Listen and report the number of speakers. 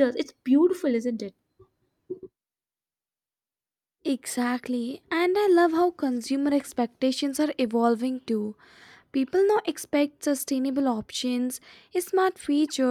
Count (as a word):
two